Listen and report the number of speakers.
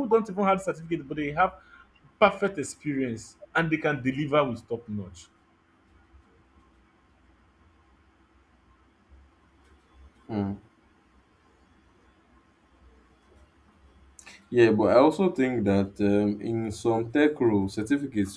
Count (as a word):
two